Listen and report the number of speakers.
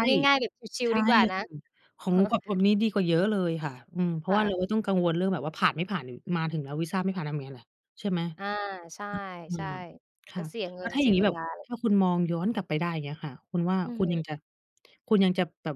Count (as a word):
two